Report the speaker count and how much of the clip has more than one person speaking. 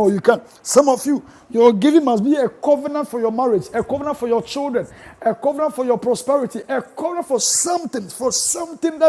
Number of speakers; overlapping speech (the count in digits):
1, no overlap